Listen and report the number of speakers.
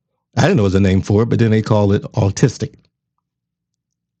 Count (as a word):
one